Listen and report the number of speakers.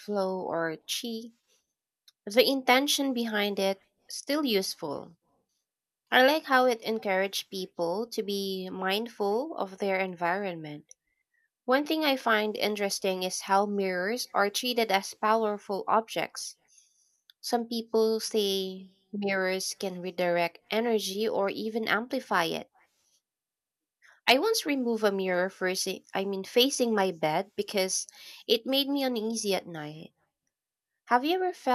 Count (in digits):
1